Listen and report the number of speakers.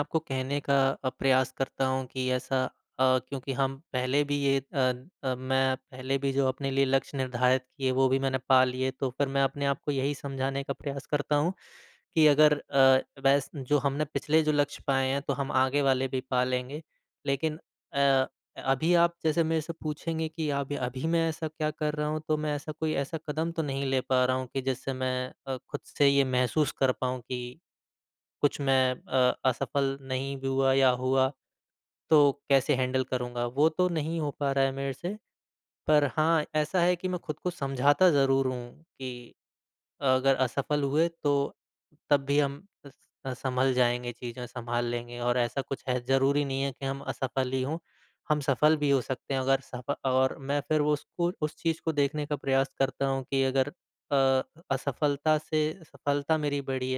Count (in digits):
1